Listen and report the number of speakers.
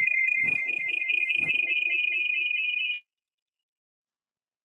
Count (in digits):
0